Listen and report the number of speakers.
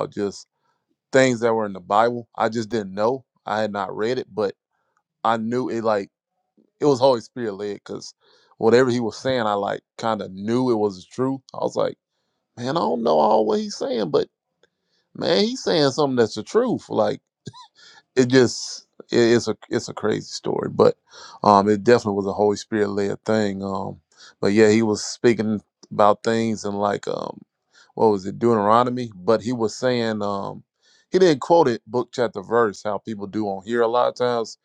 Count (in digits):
1